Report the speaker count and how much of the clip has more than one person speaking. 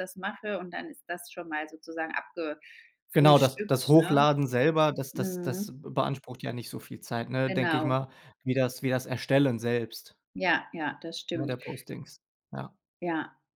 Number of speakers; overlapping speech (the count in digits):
2, about 11%